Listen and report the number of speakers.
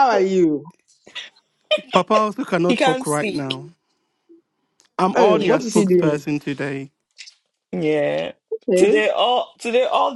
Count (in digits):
3